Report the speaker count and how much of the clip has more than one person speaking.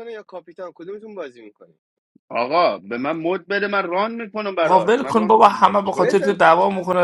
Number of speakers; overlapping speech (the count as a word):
three, about 24%